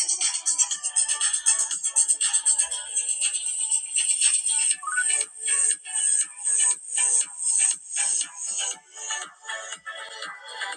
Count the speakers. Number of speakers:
0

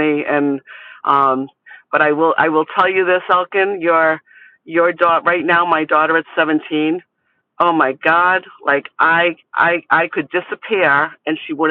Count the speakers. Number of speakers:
1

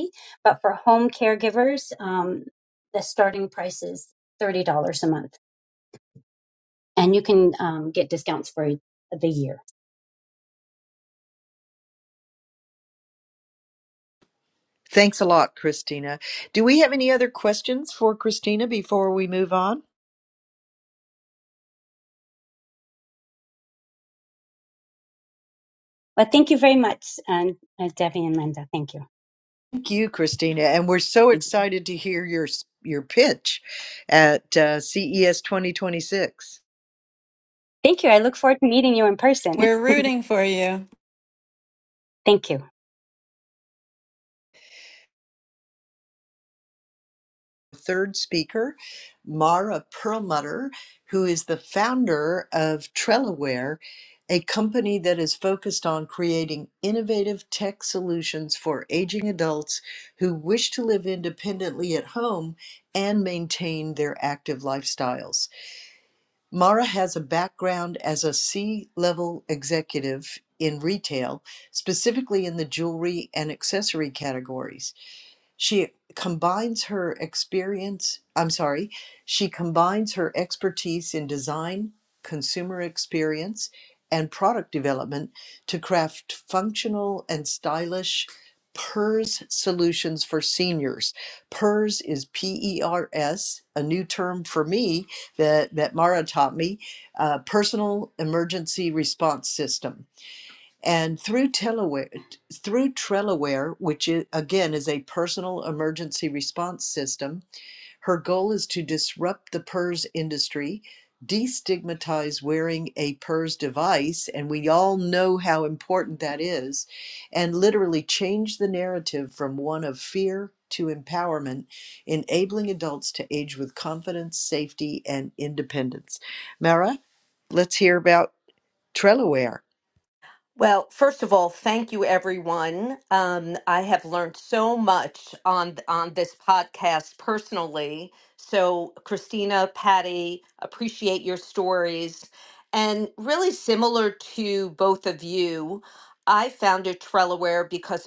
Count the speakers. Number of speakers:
4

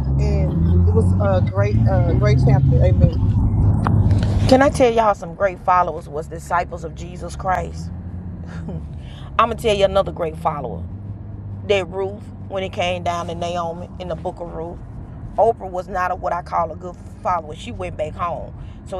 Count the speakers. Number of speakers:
2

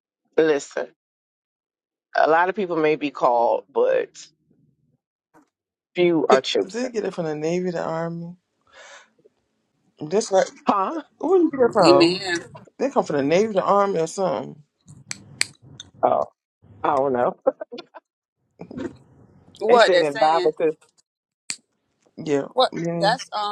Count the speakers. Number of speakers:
3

